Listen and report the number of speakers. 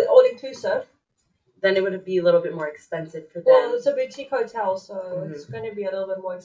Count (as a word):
two